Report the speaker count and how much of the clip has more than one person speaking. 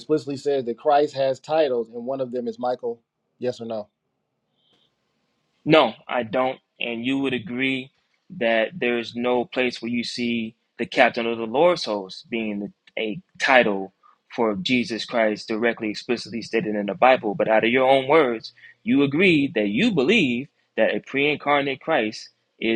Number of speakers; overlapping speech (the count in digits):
2, no overlap